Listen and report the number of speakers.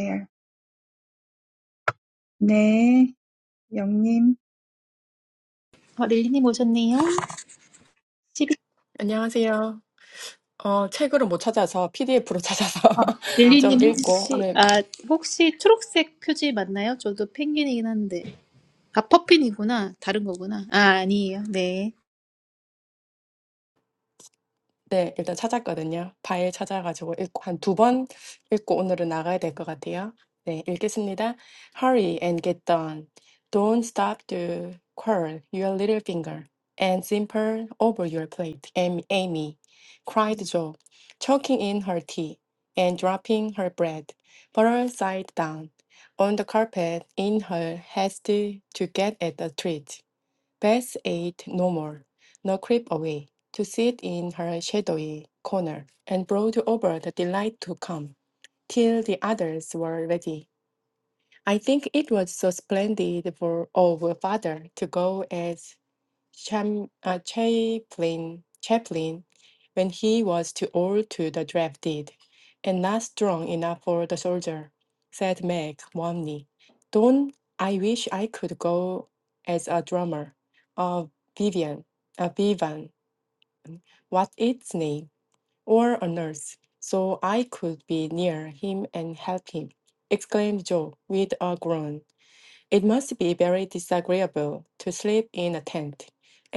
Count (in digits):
3